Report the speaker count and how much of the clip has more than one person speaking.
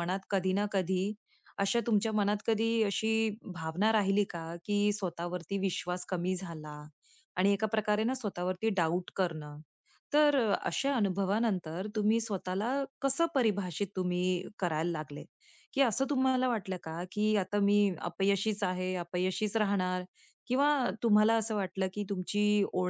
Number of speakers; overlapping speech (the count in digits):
1, no overlap